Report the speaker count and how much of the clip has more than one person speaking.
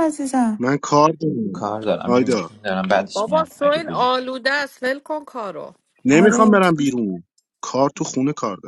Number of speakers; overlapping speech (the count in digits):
4, about 22%